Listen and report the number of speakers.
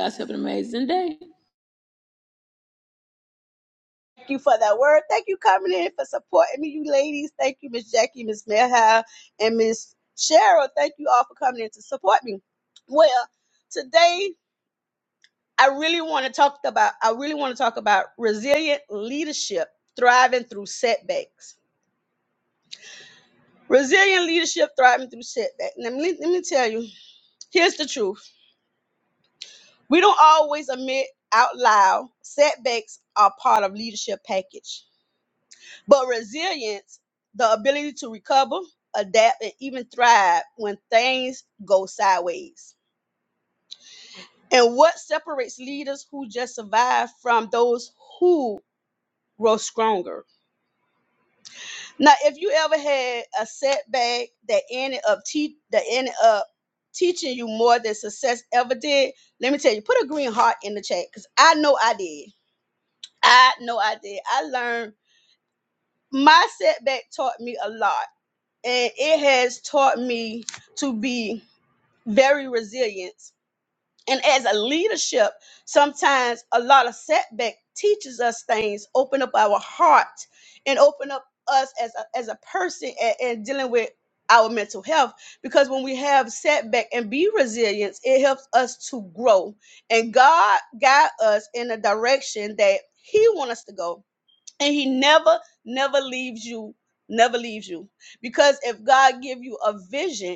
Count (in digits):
2